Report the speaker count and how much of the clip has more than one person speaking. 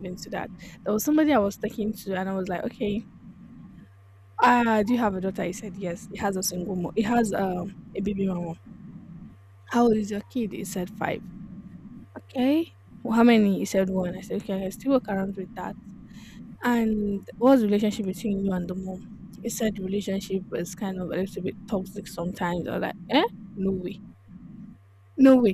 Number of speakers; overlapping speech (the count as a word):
one, no overlap